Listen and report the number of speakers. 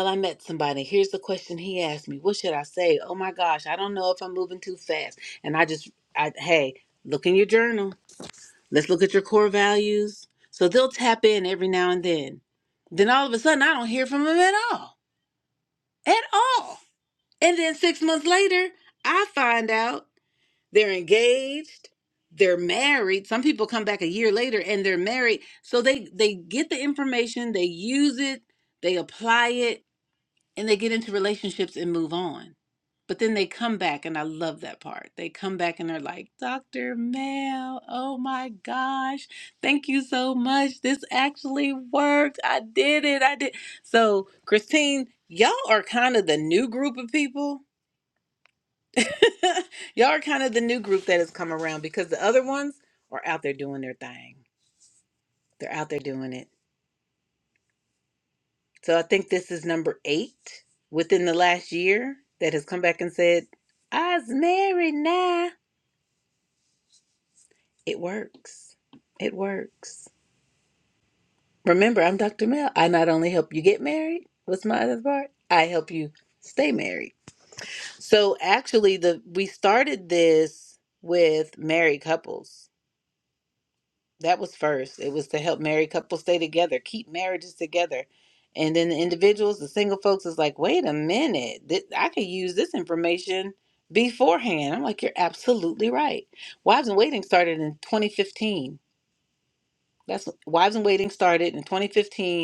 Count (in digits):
1